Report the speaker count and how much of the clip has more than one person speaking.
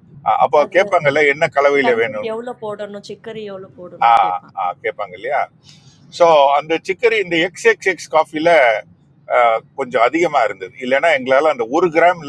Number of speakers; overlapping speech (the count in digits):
2, about 9%